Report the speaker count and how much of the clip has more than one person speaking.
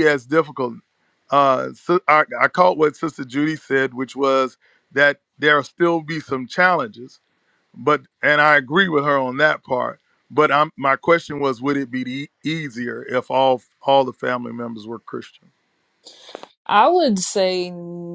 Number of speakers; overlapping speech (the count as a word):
two, no overlap